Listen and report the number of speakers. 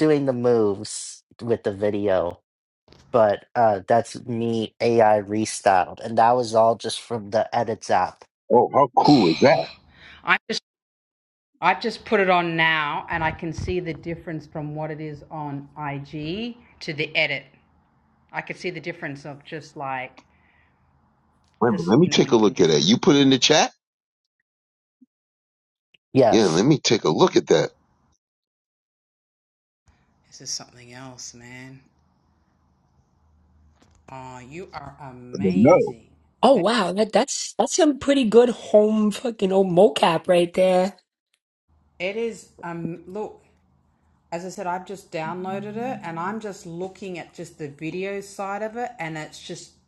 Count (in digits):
4